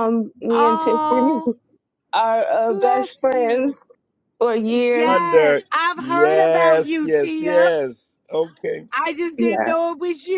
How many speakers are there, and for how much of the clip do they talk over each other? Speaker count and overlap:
3, about 48%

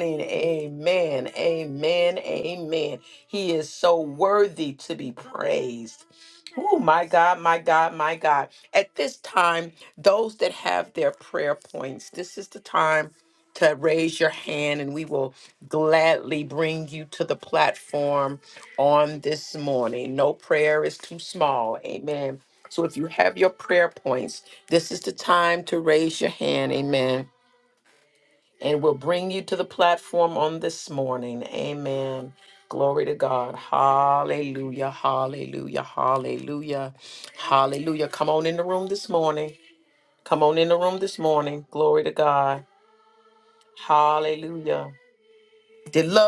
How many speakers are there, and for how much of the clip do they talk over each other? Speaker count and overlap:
1, no overlap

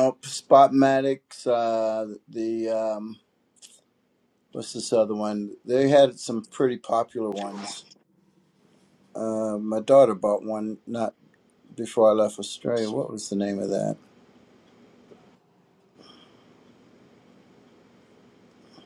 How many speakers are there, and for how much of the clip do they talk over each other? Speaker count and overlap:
1, no overlap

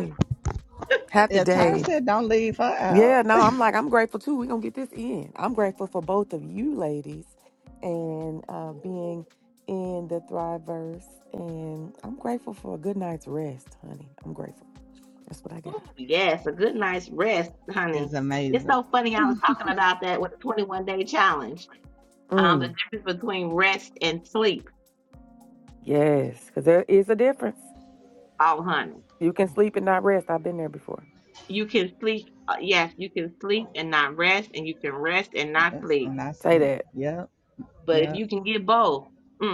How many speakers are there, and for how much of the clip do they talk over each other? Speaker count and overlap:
3, about 7%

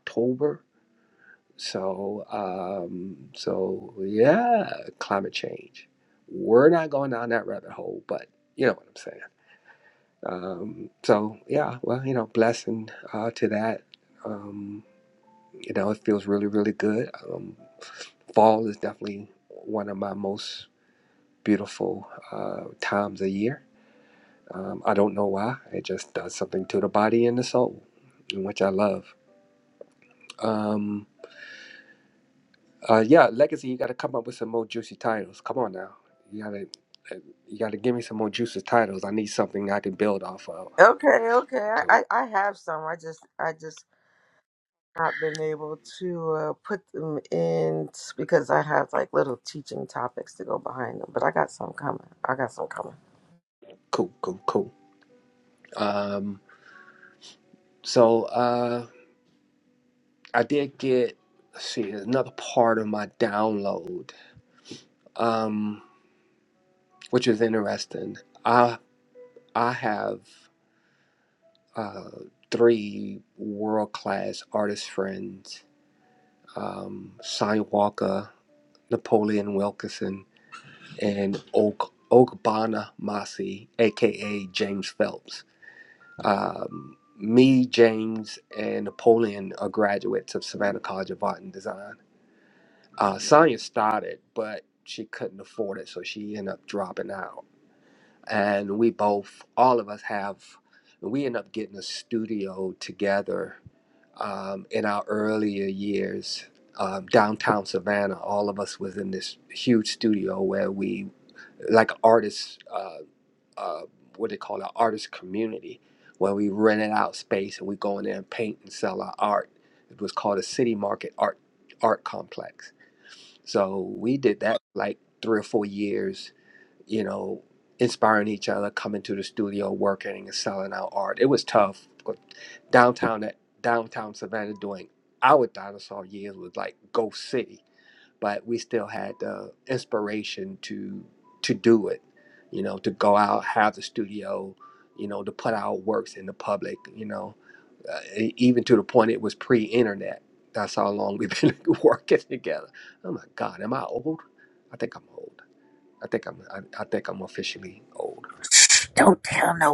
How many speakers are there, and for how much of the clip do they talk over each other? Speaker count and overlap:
3, under 1%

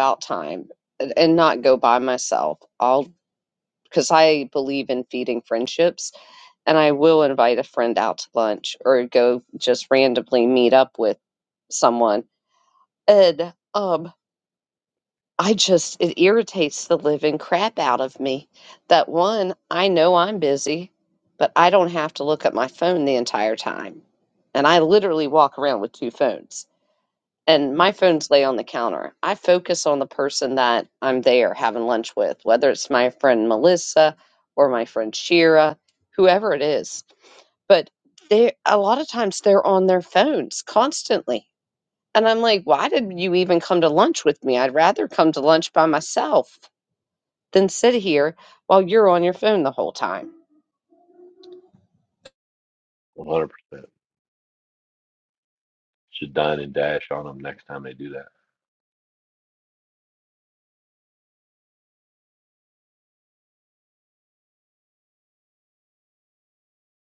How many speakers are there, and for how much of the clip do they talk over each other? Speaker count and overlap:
2, no overlap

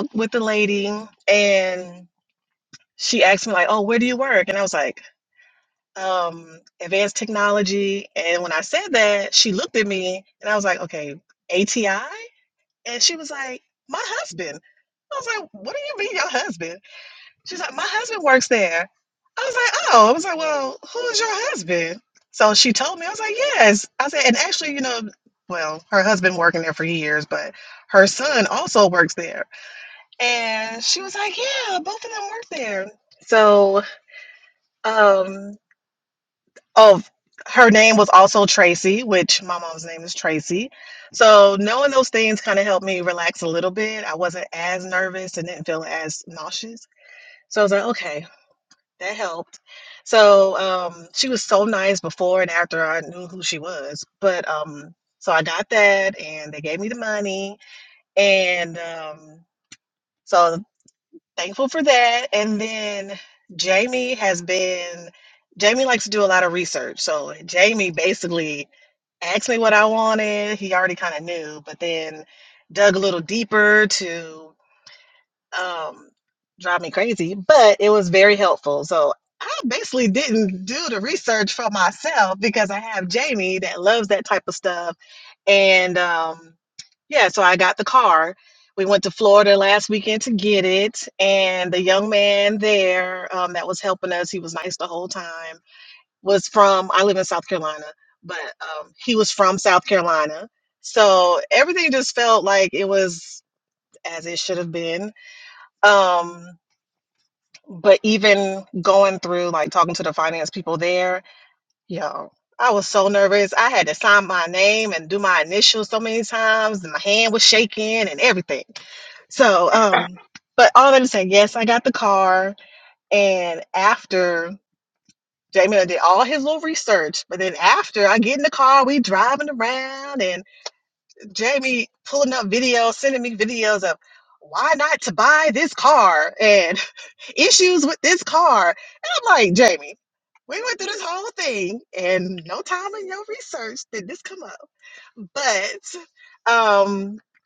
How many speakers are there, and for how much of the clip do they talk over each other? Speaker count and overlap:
1, no overlap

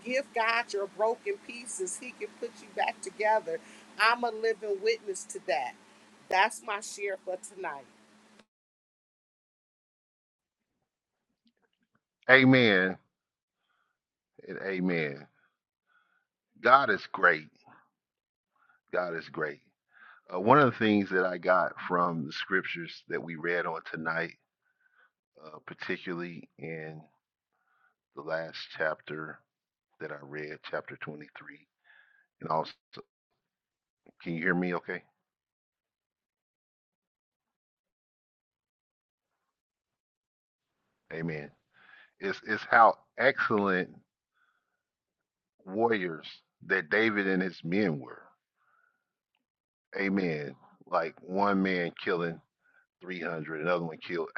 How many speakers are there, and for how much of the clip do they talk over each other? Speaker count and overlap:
2, no overlap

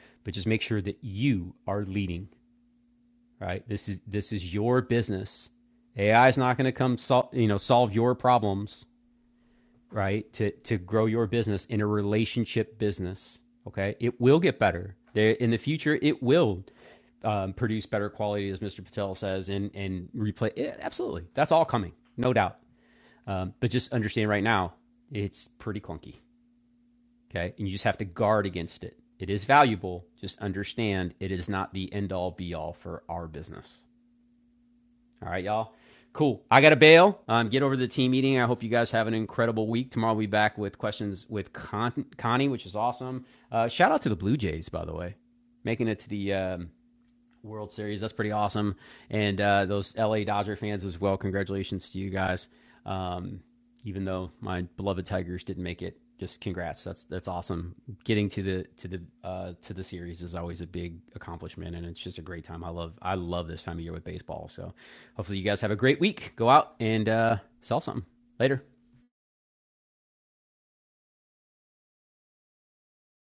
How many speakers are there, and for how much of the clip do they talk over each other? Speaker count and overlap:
1, no overlap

